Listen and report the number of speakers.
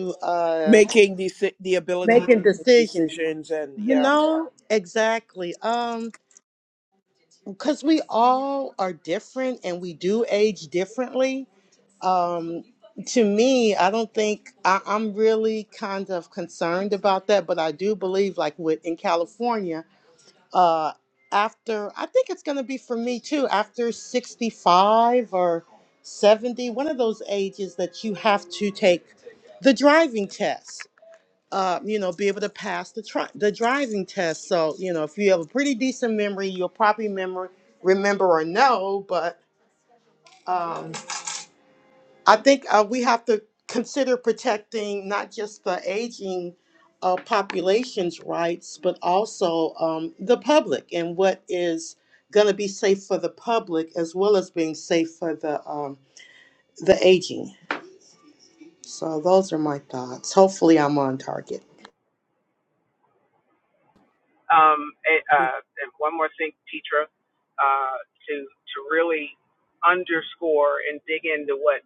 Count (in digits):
3